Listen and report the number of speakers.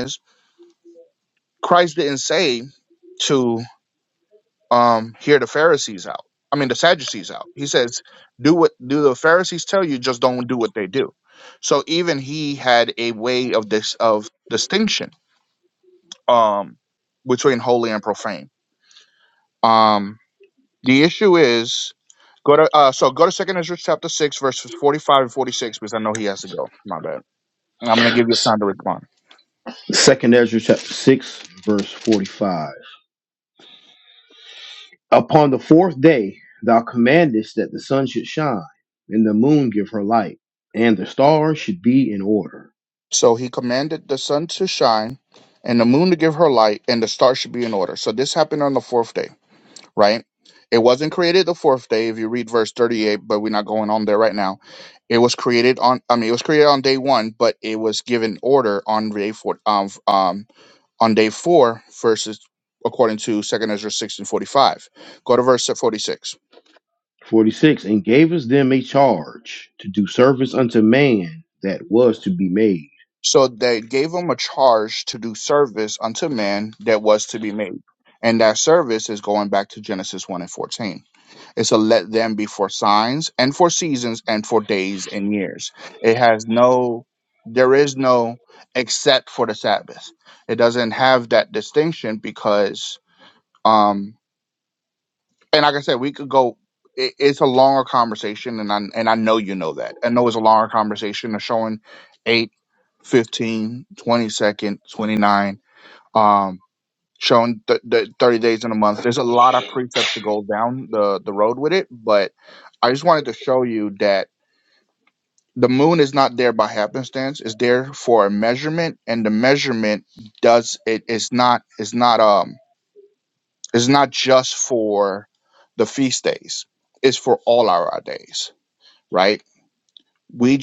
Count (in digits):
2